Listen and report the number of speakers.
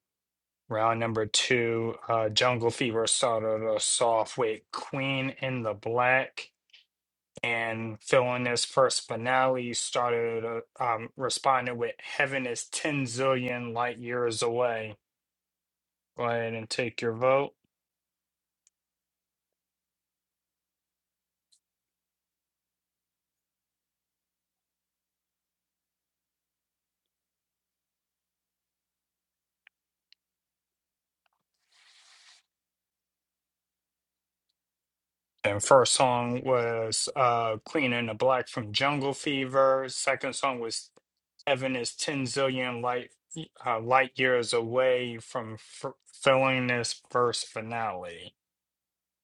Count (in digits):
1